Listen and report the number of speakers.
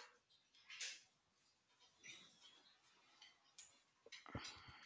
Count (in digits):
0